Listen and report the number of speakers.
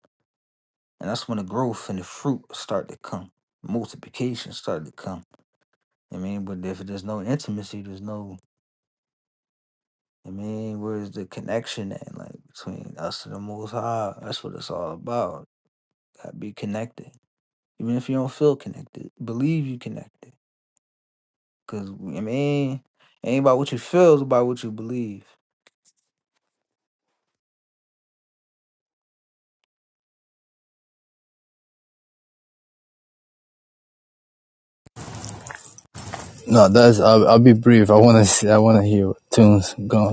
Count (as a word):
two